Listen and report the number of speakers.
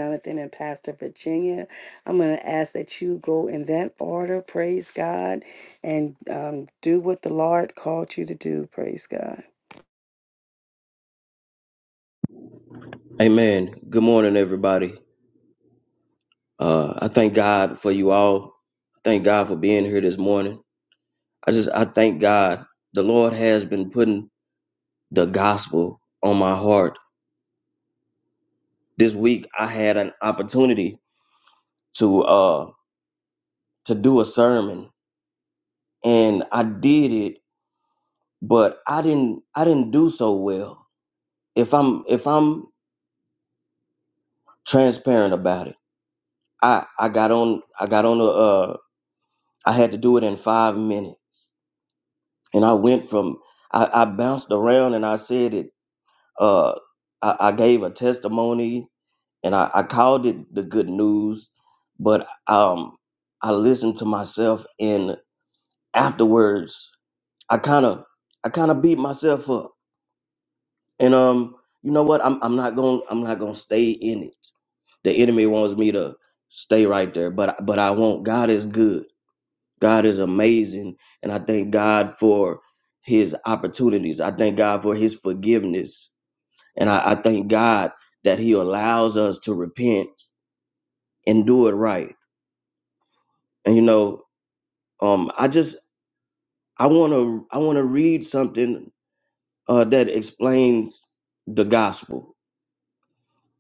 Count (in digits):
2